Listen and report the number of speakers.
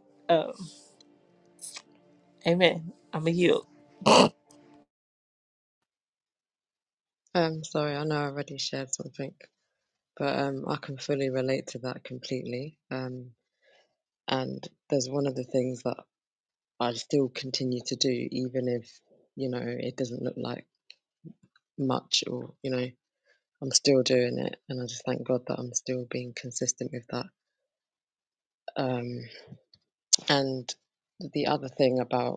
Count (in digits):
2